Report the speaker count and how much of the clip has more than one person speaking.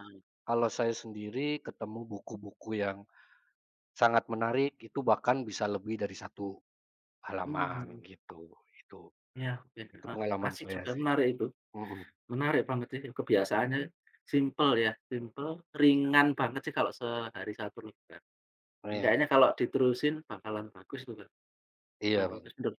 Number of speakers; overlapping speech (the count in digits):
2, about 10%